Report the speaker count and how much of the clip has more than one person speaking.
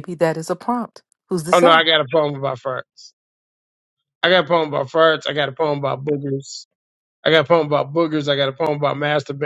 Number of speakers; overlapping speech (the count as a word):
two, about 3%